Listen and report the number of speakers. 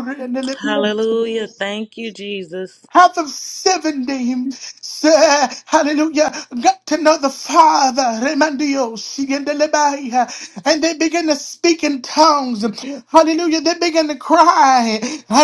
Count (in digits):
2